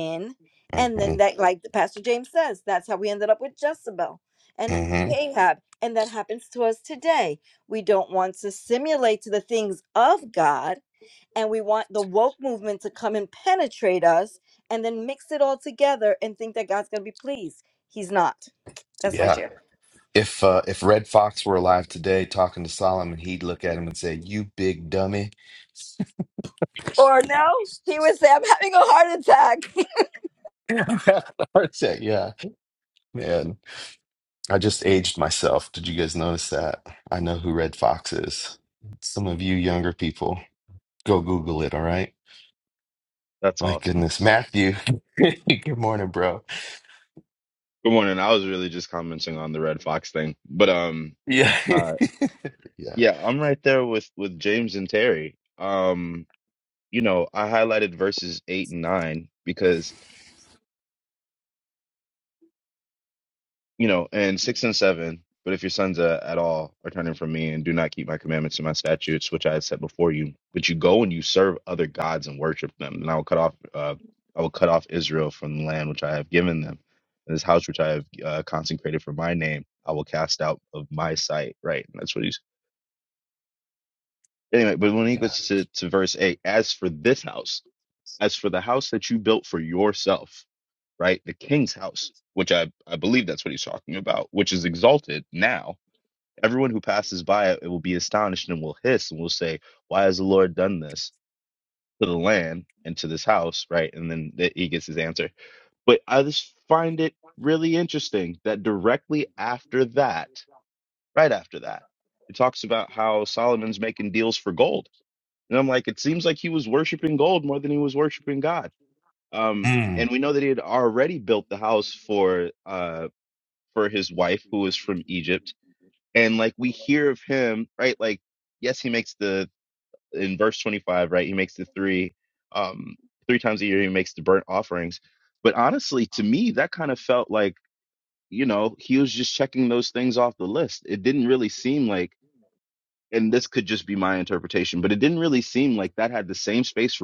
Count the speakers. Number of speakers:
three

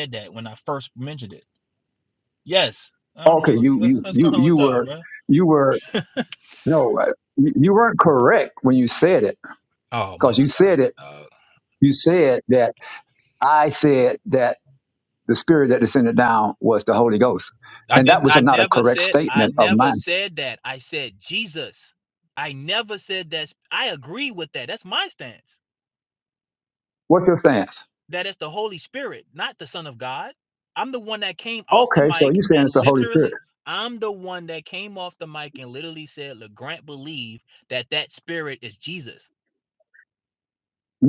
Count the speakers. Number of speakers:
two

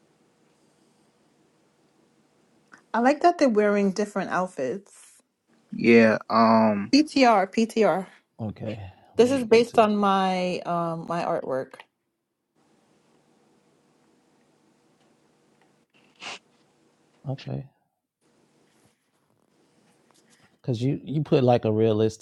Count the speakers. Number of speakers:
three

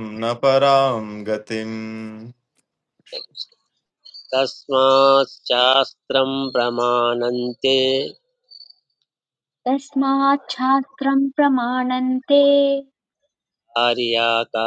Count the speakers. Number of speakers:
three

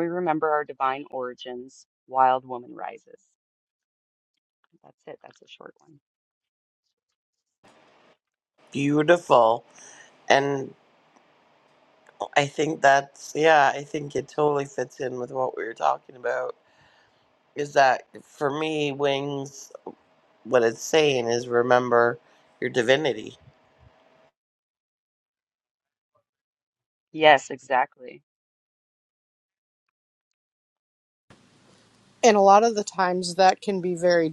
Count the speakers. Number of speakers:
three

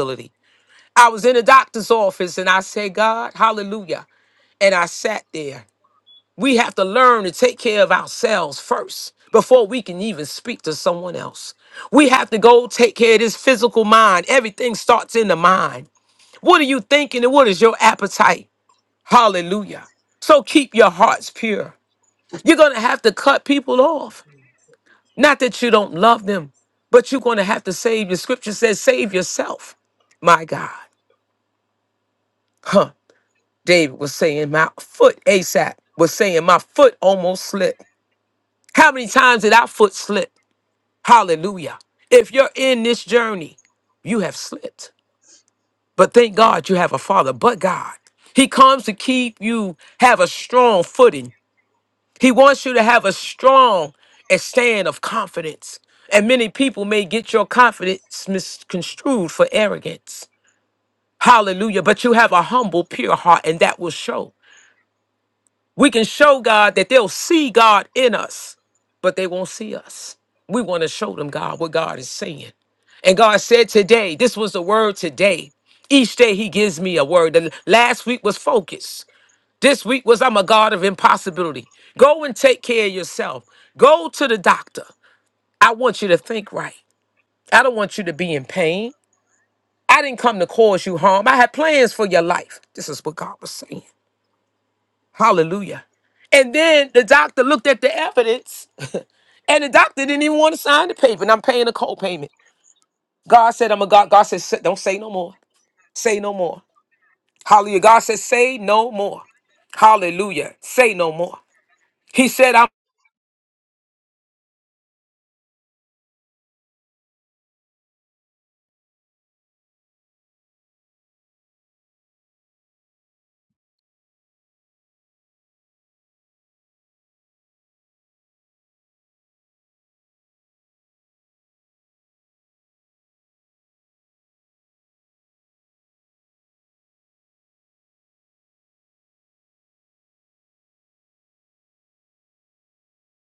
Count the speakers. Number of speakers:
one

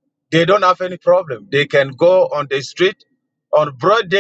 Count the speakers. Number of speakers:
one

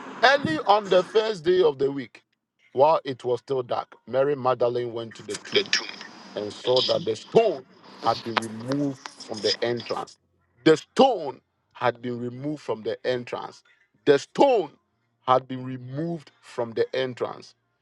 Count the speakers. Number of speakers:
one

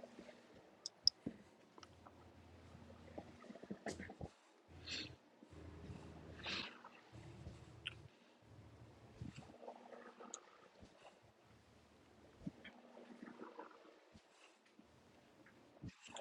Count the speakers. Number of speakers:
zero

